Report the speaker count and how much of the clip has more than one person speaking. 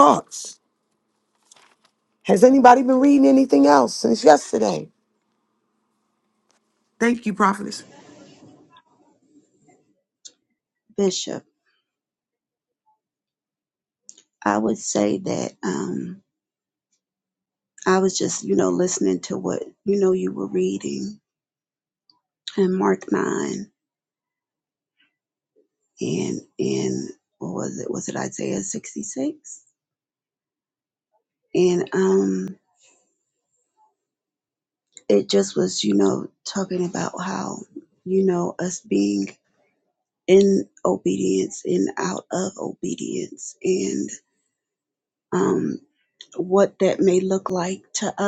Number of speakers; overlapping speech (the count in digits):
2, no overlap